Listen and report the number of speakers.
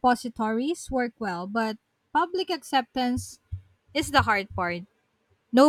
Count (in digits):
1